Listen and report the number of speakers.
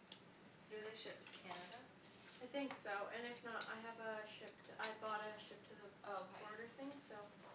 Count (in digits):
2